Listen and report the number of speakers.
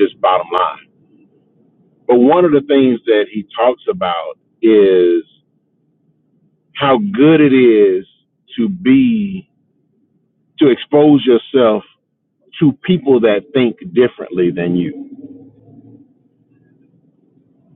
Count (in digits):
1